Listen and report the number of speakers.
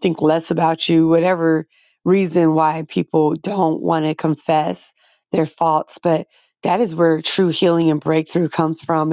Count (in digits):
1